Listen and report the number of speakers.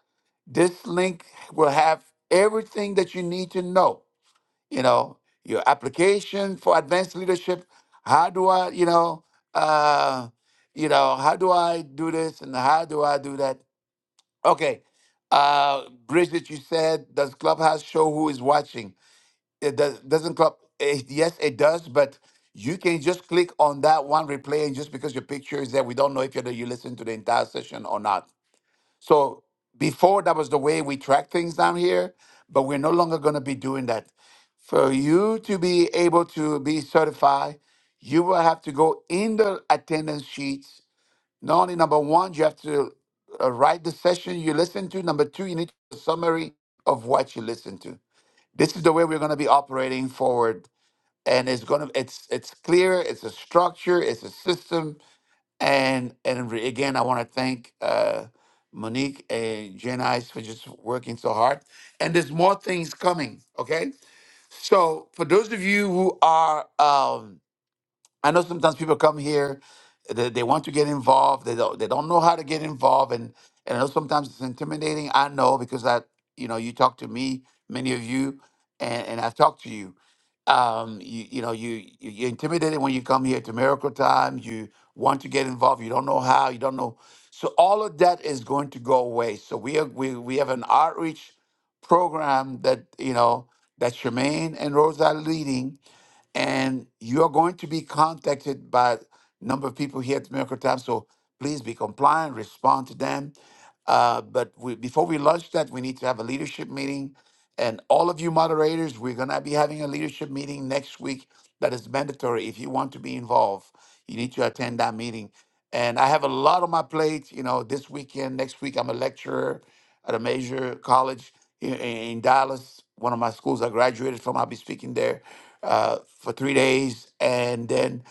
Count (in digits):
1